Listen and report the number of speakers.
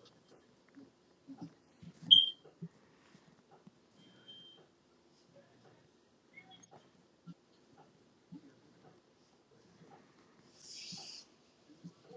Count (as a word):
zero